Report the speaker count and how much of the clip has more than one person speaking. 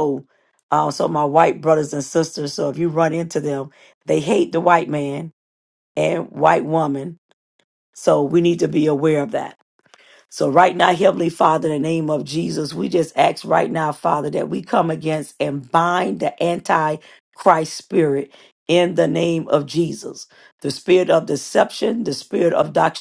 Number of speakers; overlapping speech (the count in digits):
1, no overlap